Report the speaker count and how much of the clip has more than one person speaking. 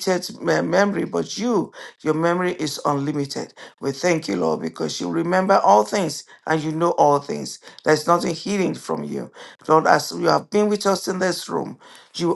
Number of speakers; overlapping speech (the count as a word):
one, no overlap